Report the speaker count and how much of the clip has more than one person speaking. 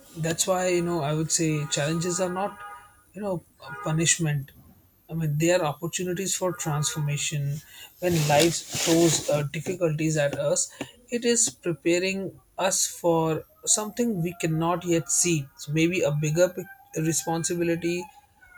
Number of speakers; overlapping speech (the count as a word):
one, no overlap